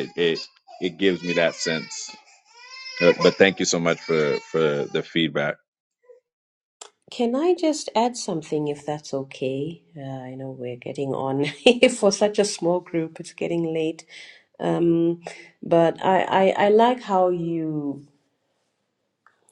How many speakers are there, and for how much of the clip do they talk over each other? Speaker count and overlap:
two, no overlap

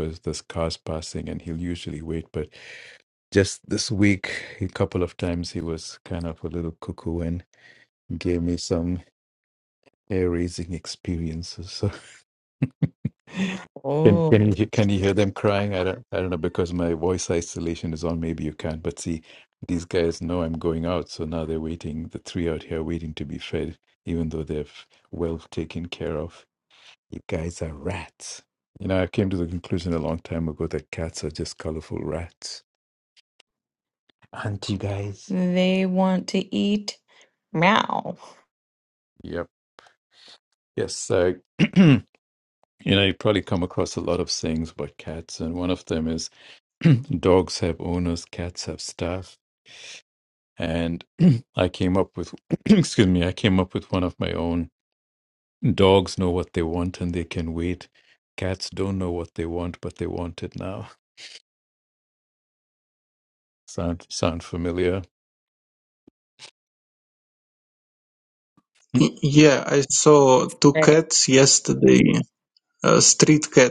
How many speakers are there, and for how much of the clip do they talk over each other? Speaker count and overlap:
three, about 1%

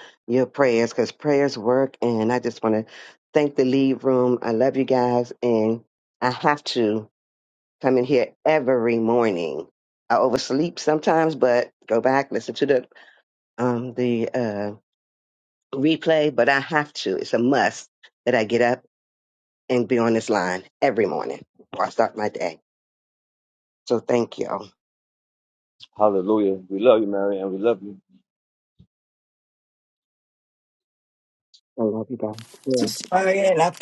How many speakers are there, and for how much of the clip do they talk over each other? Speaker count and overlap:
three, under 1%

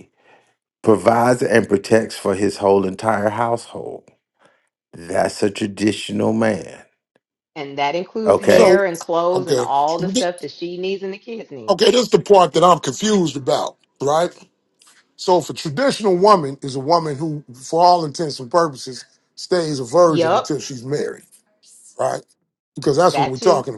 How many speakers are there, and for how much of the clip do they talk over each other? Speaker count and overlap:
three, about 8%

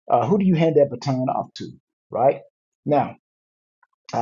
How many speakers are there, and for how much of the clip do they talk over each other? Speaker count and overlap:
one, no overlap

